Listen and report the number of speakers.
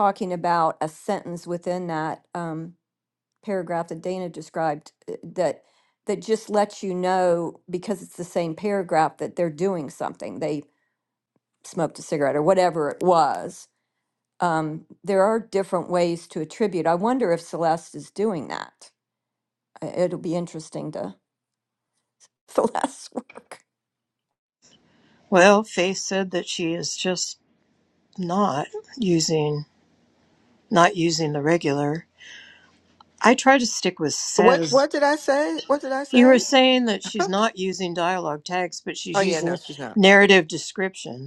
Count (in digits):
3